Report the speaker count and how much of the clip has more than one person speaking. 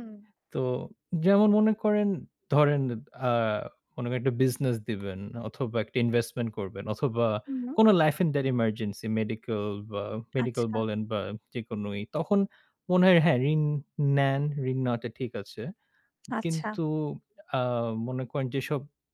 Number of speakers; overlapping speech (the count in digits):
2, about 4%